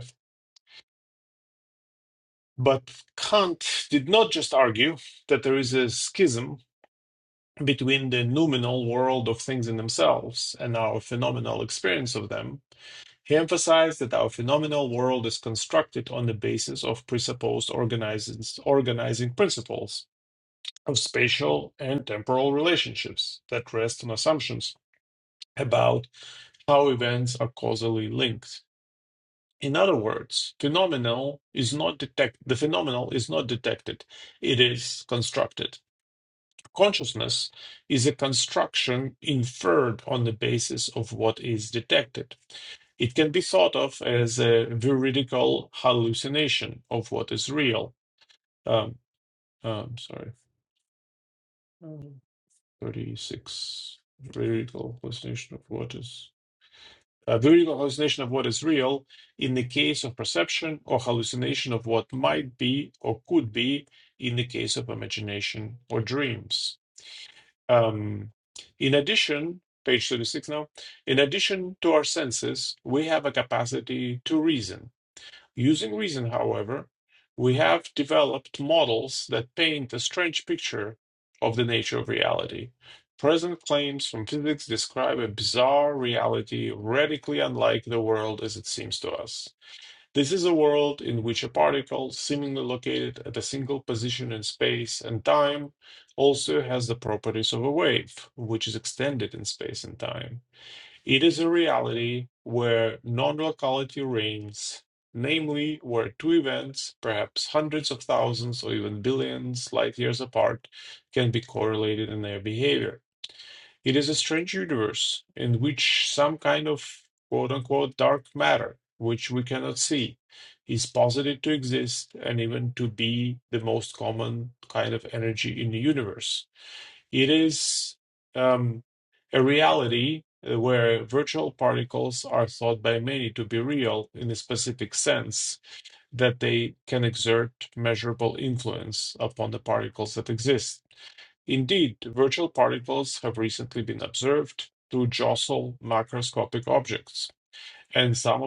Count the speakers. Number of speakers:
1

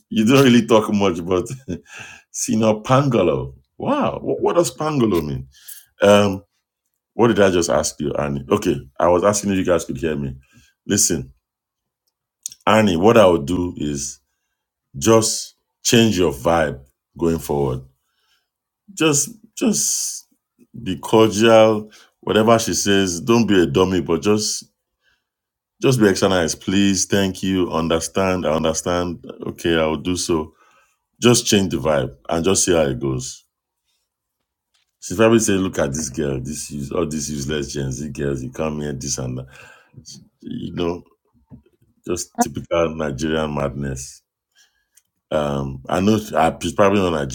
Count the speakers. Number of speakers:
1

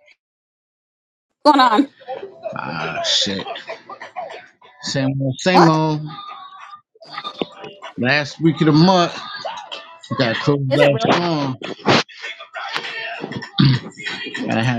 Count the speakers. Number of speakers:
2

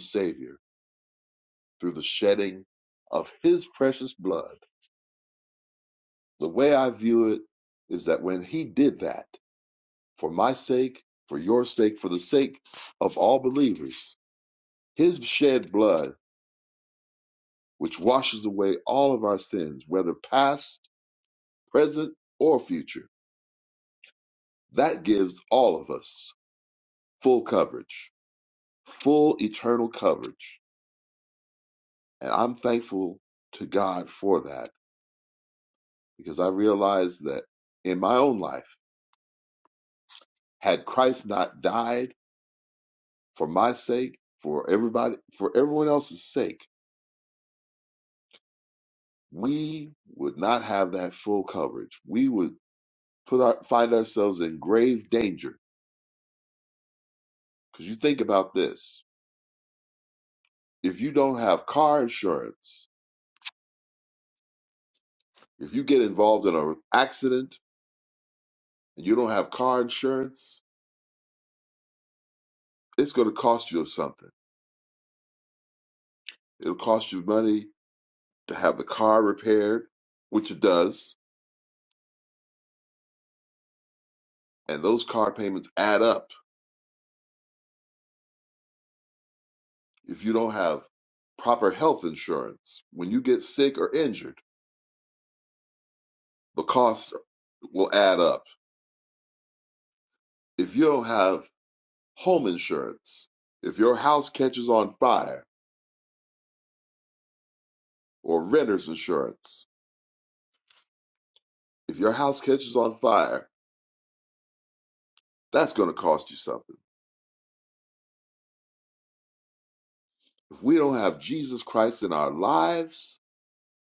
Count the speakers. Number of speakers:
1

